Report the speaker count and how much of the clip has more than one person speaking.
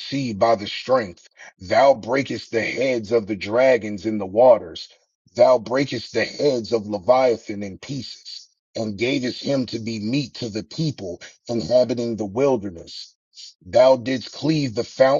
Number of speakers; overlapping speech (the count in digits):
1, no overlap